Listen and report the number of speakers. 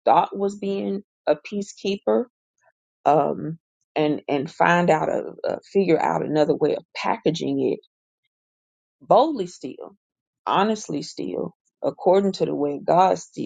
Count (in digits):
1